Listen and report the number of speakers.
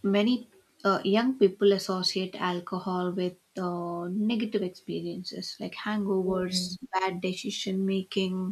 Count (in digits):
1